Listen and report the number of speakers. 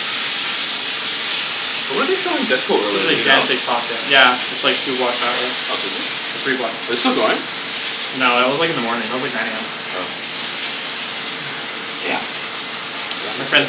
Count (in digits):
2